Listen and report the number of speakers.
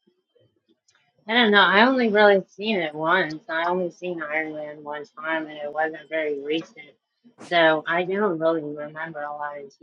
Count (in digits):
1